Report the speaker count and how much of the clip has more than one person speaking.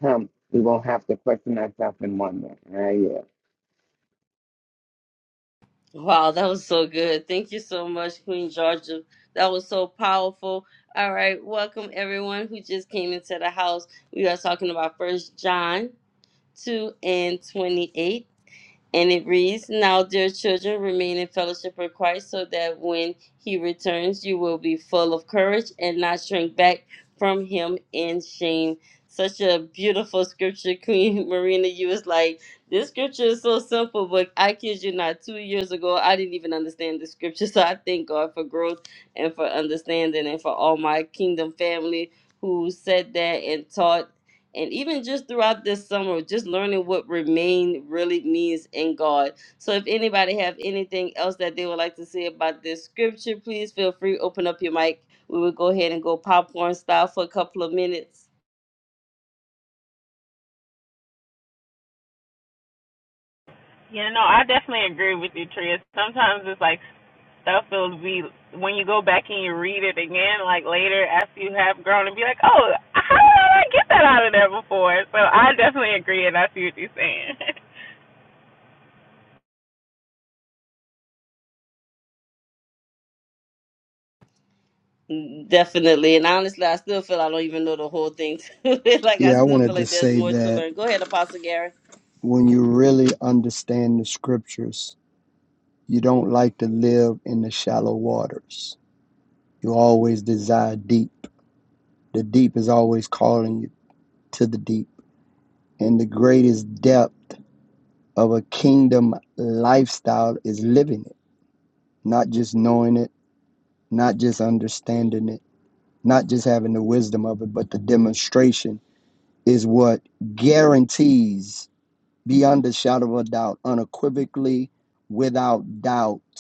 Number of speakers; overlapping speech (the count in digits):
4, about 1%